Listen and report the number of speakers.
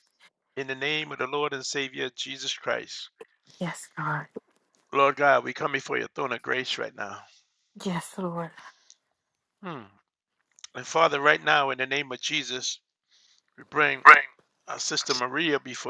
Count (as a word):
two